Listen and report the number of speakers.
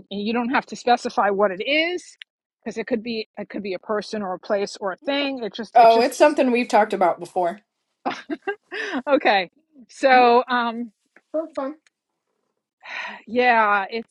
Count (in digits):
2